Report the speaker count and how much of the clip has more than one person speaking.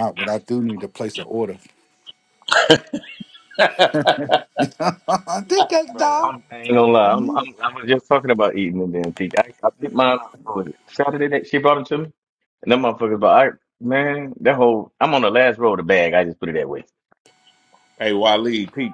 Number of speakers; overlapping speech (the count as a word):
three, about 4%